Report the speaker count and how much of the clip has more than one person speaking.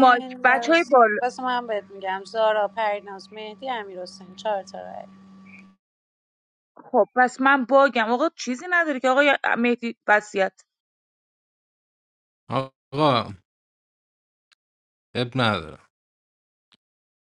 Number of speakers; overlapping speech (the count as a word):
three, about 5%